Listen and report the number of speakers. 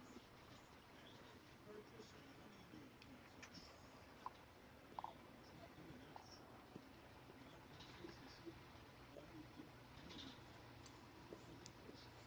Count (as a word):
zero